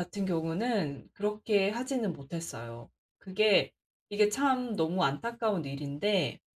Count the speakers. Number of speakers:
1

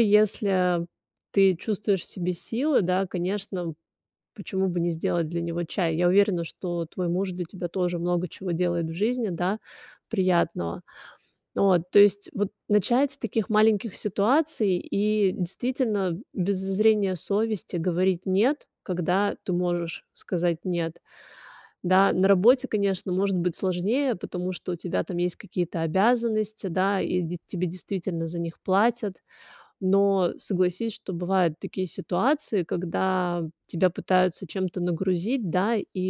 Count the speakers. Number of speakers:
1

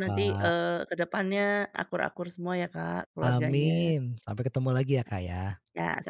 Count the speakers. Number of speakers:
2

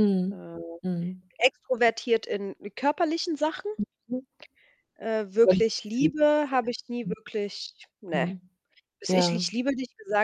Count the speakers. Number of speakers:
2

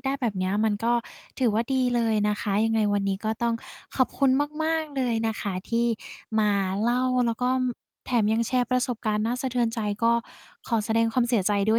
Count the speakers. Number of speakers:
1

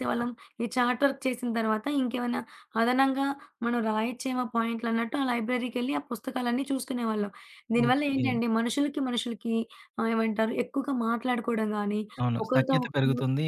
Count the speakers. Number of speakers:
2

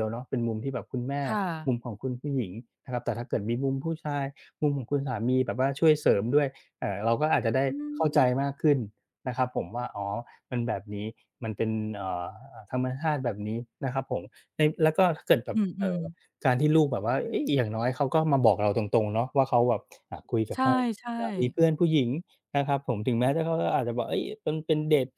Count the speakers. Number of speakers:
2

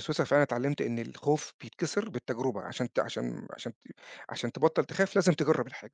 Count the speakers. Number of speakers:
1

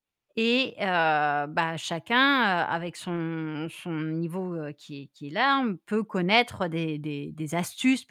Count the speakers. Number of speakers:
1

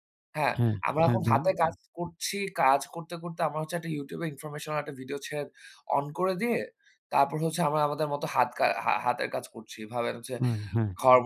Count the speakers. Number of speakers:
2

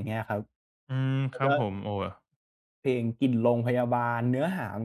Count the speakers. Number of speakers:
2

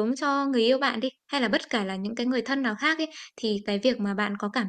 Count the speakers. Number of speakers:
1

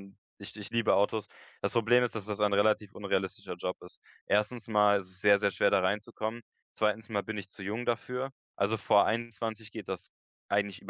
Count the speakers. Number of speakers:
1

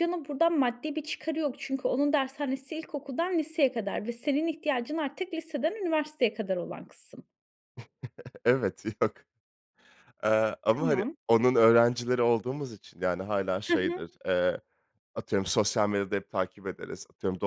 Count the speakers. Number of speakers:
2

